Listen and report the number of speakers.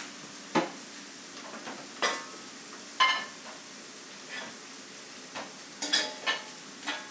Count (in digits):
0